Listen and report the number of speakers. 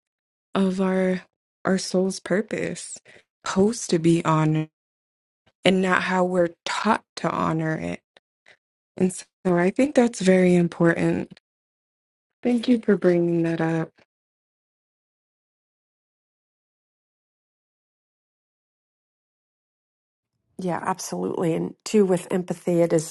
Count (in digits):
2